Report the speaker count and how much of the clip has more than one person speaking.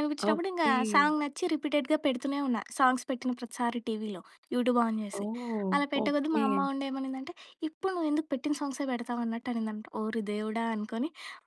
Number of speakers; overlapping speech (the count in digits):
2, about 12%